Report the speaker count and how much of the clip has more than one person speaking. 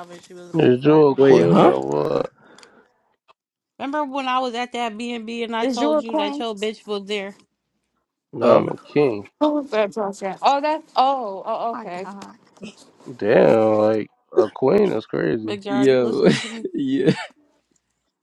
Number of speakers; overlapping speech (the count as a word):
four, about 19%